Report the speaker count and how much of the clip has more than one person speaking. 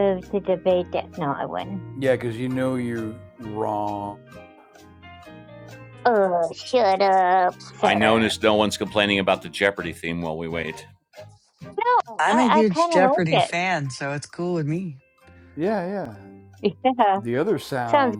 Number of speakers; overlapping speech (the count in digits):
4, about 12%